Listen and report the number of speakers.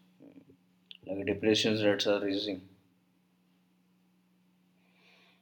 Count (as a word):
one